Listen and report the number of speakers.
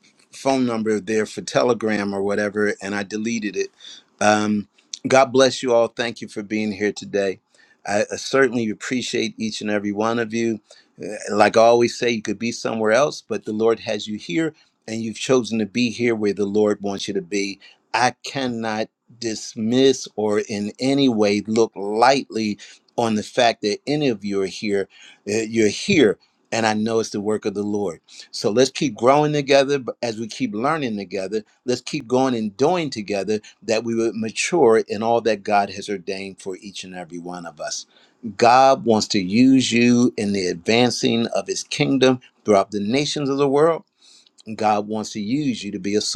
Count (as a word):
one